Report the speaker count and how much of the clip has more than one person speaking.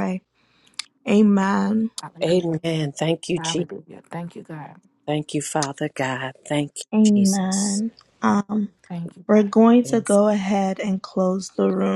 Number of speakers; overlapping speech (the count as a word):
three, about 13%